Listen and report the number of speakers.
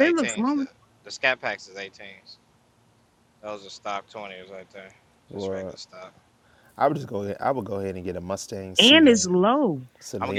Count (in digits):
3